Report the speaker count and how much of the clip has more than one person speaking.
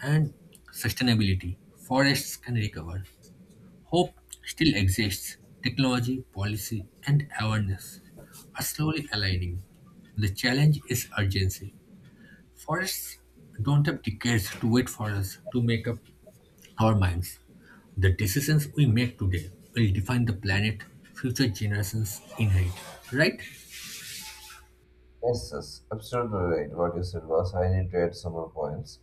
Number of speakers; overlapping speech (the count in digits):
2, no overlap